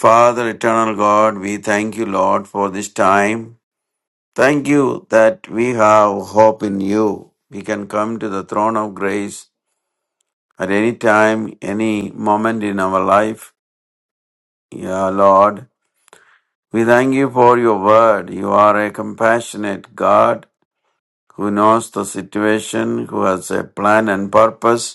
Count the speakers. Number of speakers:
one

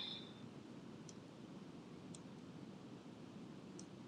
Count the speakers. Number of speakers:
zero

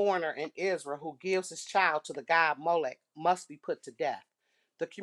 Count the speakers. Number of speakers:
one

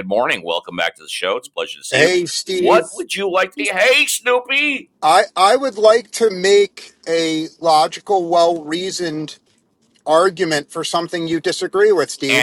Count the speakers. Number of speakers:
two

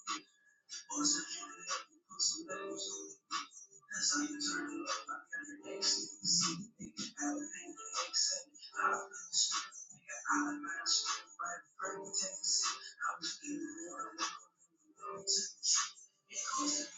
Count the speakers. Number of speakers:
zero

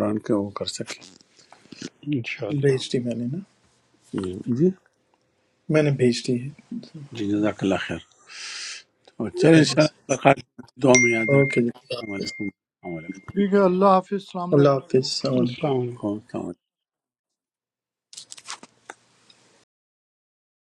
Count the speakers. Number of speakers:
four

